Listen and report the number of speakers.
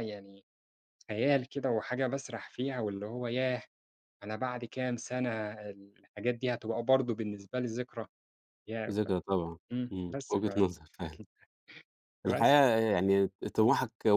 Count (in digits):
2